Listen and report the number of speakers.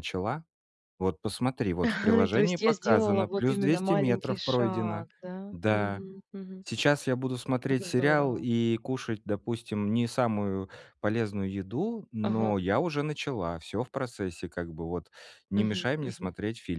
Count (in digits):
2